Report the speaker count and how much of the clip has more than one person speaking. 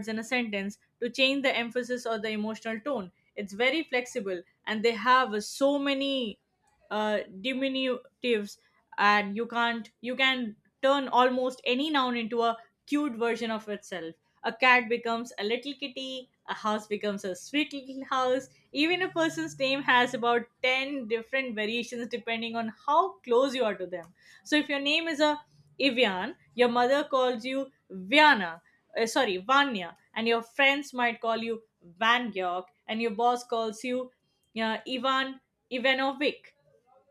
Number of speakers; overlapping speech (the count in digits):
1, no overlap